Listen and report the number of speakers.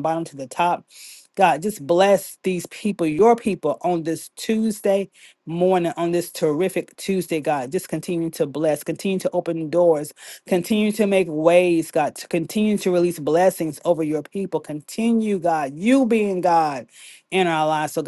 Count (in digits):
1